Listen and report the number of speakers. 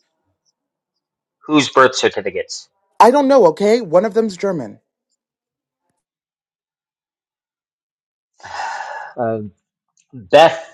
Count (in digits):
2